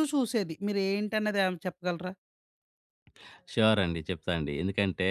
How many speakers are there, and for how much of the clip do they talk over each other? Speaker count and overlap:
two, no overlap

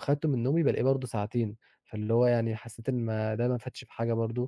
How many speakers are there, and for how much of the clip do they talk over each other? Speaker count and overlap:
one, no overlap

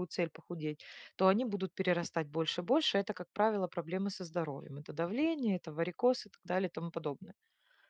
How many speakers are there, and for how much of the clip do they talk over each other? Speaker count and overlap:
one, no overlap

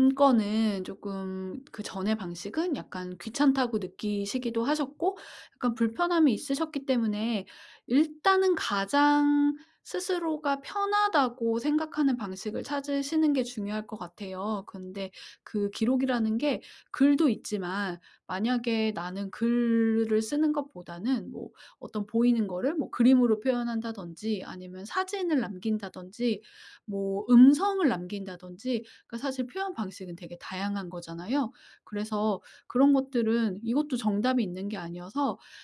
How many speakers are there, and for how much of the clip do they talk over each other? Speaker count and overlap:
one, no overlap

